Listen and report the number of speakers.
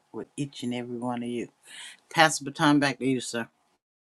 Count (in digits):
1